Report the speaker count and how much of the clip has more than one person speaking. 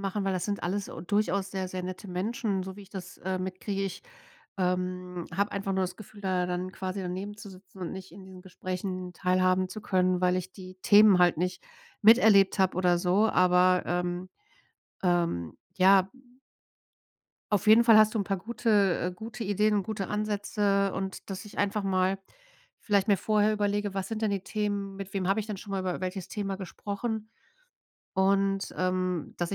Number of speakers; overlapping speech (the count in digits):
1, no overlap